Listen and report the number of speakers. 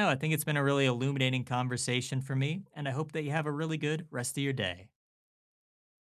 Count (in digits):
1